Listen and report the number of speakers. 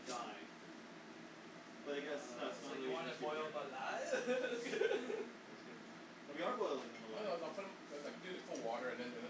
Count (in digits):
3